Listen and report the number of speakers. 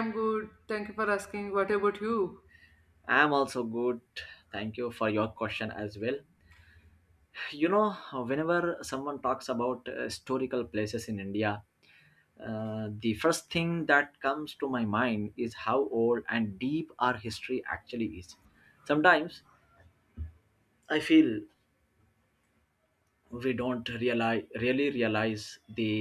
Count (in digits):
2